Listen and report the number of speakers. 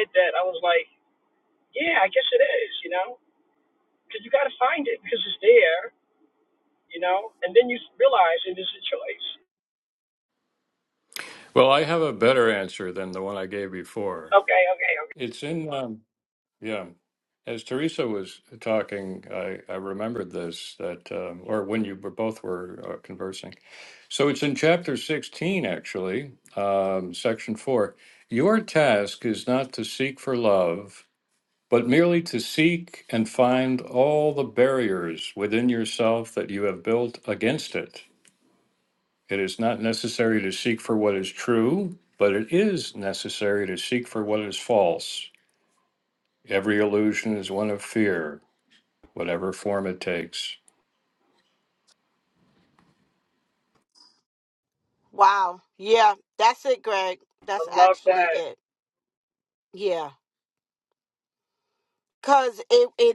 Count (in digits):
3